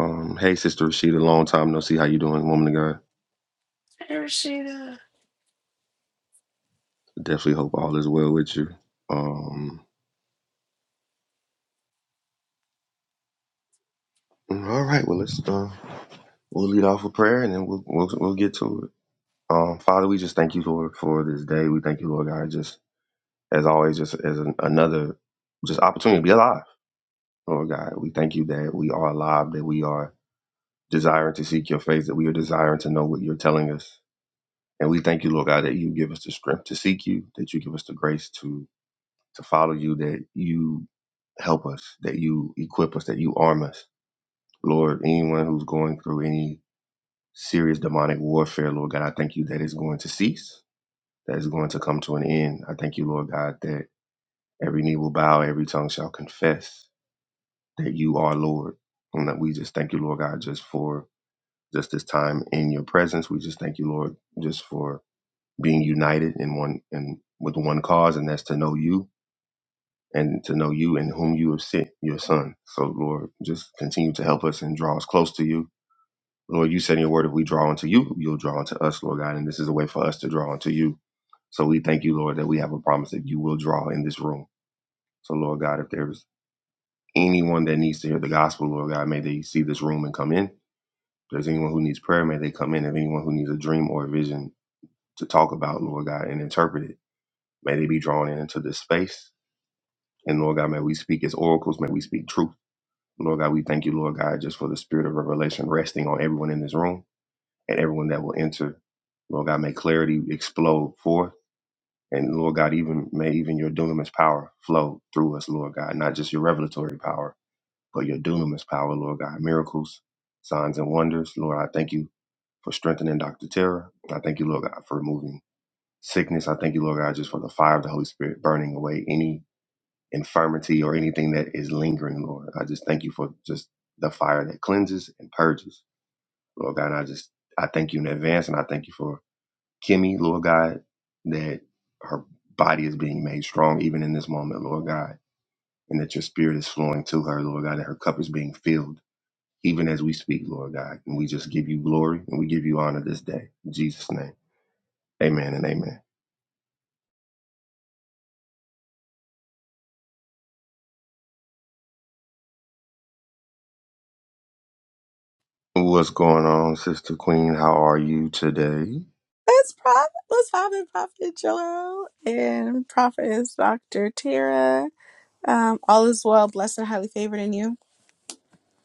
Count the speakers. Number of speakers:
three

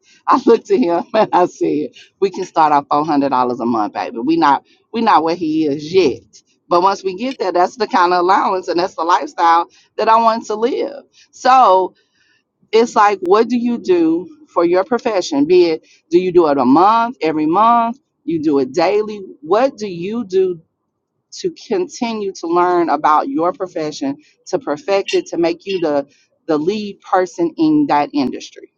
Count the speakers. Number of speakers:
one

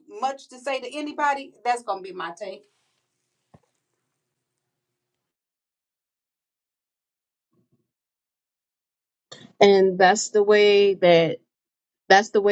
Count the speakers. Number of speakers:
two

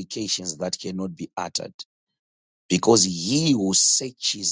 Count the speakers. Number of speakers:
one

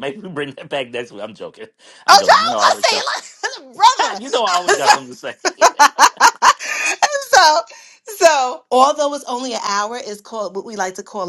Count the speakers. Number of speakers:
two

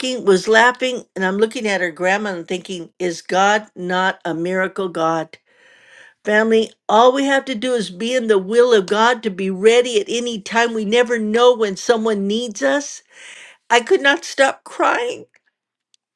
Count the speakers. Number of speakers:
one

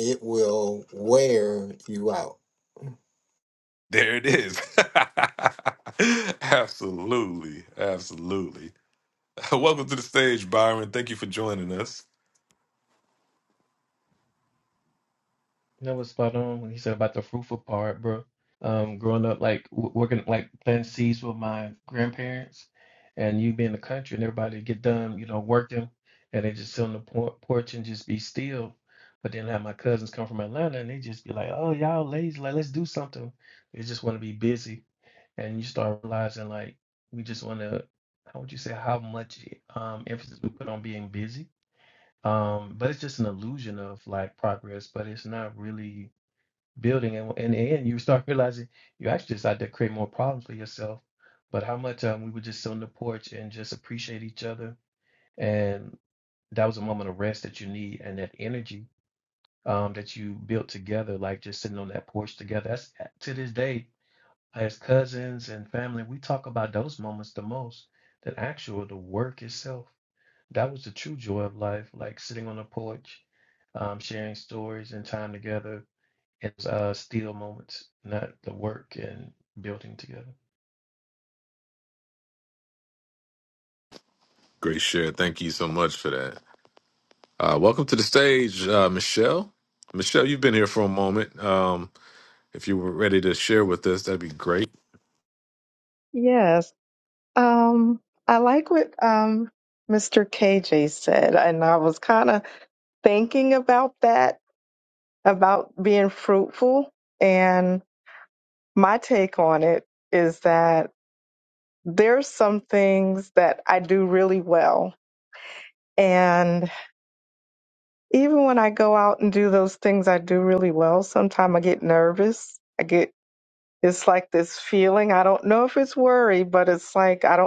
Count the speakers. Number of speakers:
four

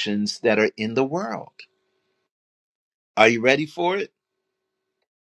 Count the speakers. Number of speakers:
one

